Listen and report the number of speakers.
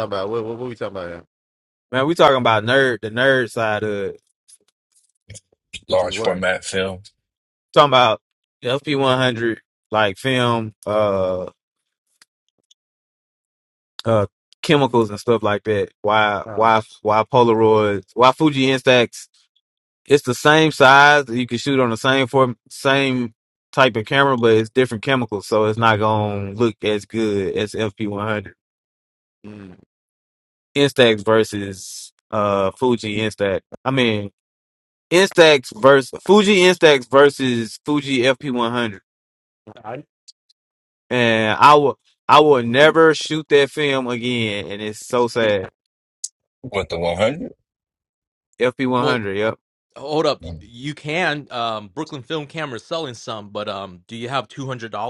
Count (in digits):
4